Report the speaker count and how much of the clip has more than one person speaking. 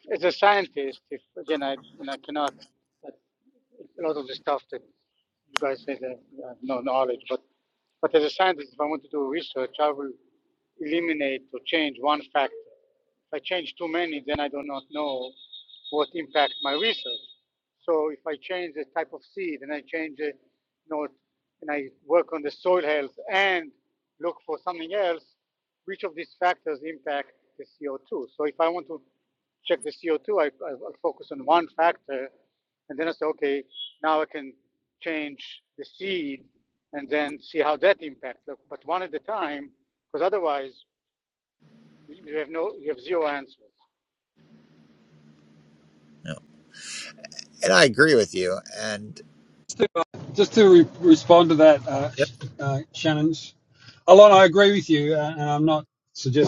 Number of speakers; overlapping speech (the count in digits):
3, no overlap